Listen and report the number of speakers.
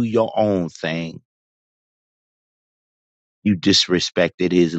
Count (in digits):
1